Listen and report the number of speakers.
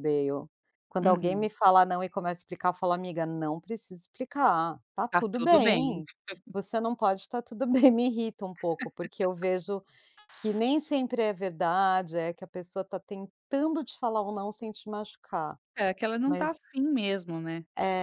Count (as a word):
two